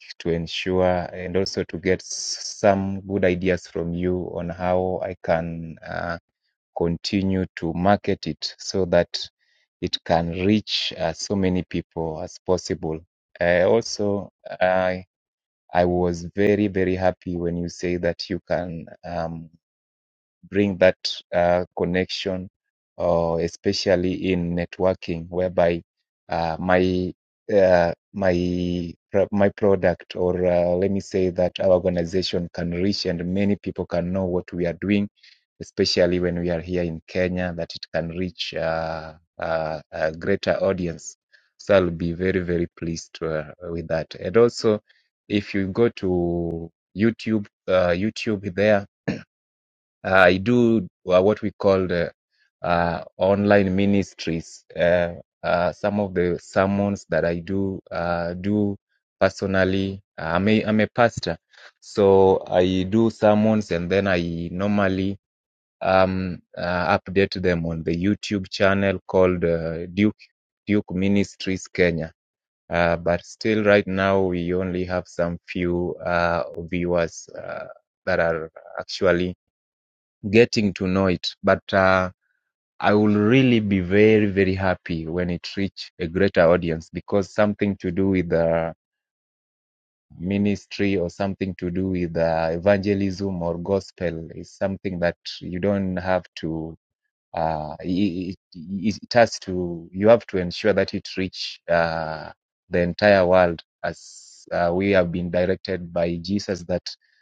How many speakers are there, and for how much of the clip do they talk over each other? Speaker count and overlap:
1, no overlap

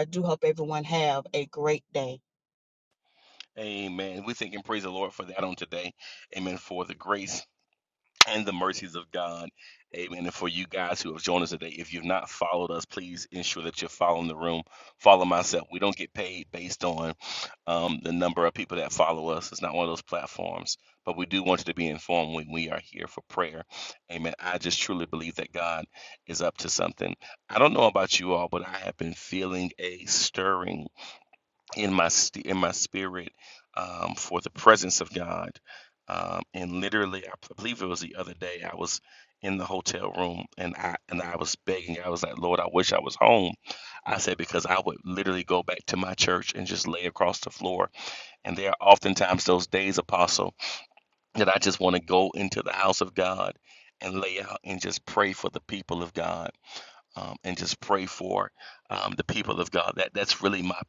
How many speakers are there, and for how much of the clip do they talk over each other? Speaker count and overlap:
2, no overlap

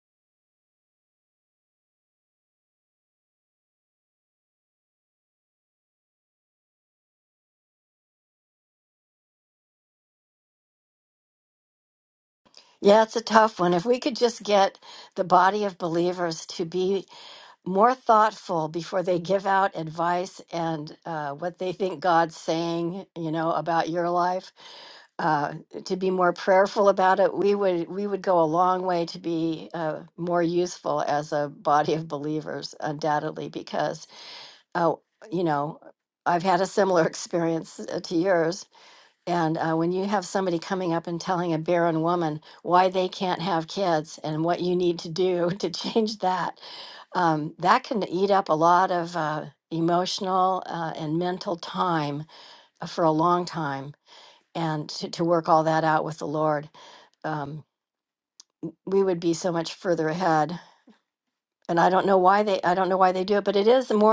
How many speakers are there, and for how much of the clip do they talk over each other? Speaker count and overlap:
1, no overlap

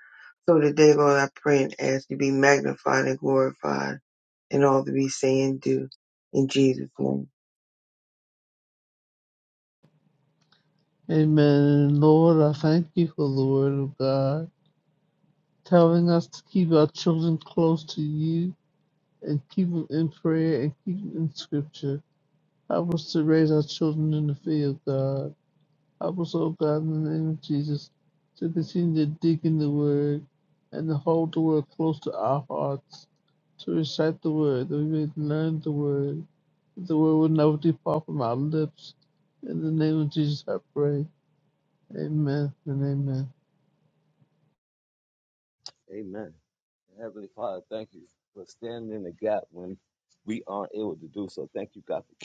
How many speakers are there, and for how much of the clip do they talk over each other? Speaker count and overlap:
3, no overlap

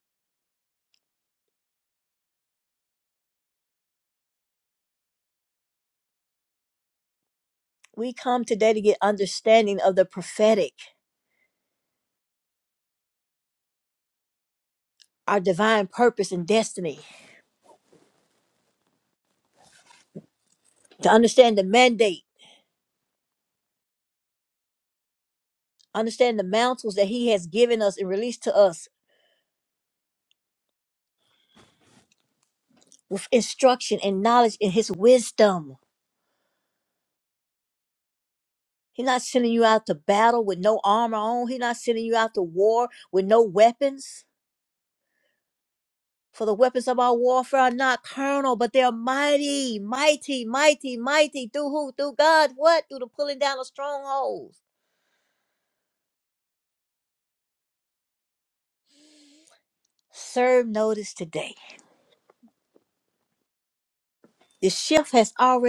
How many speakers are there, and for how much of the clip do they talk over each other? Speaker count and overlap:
1, no overlap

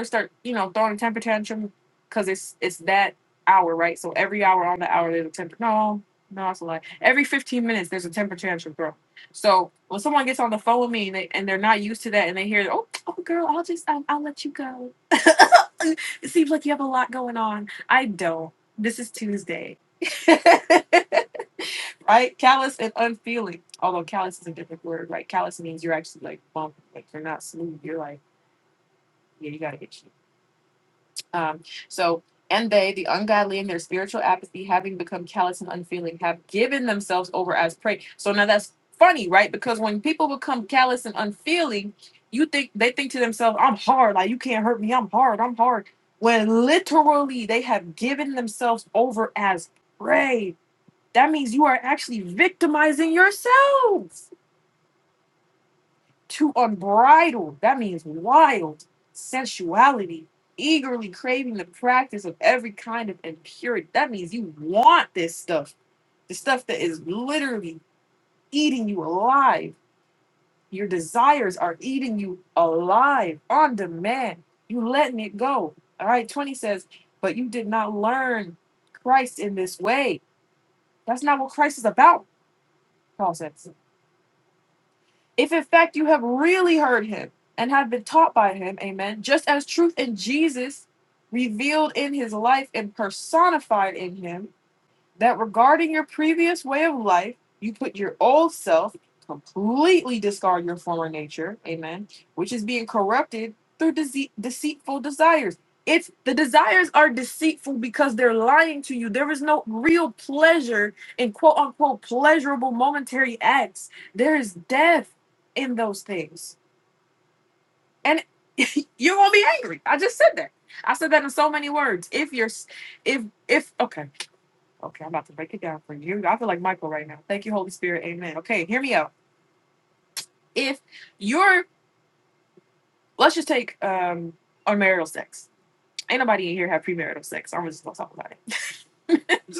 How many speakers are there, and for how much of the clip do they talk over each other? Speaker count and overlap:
1, no overlap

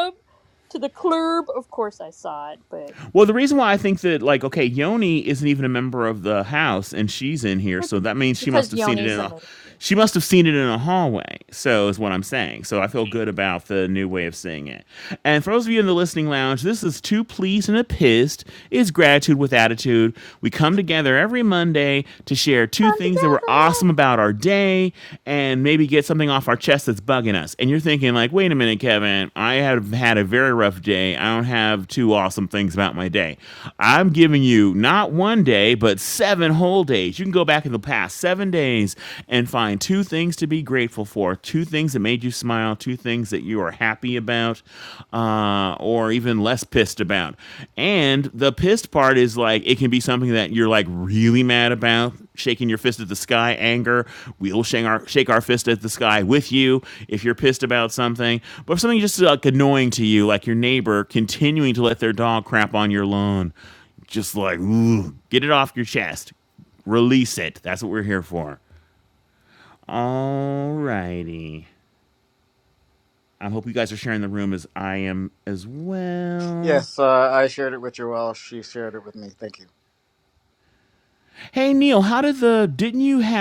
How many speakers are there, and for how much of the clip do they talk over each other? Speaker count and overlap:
3, about 2%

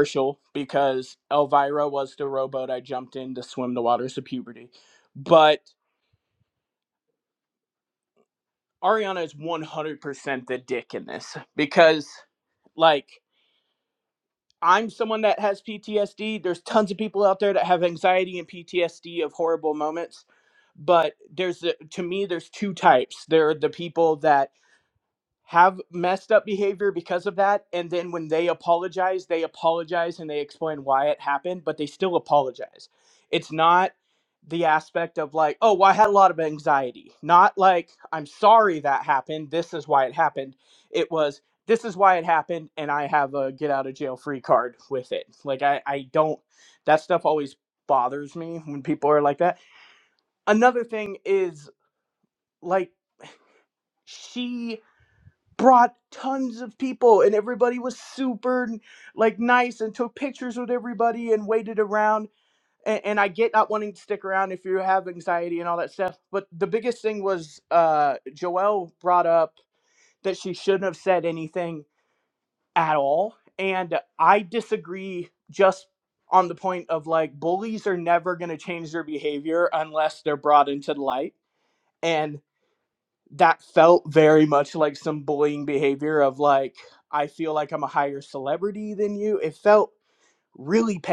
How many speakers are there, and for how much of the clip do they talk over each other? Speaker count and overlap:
1, no overlap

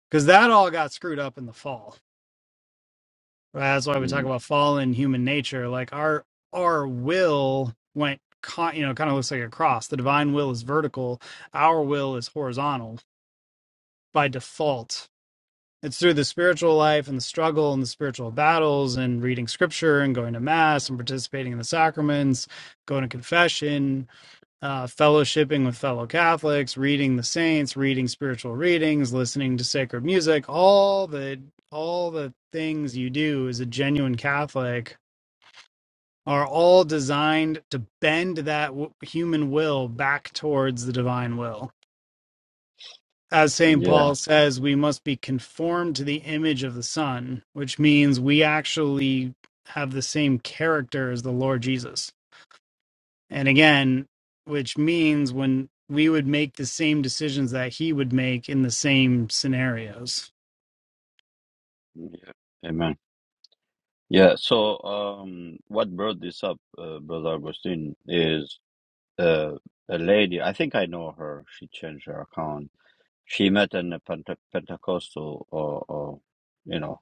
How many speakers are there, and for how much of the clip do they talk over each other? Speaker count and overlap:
2, about 1%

